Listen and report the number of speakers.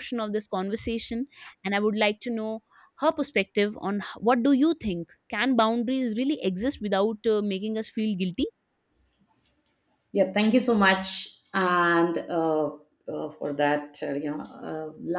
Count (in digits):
2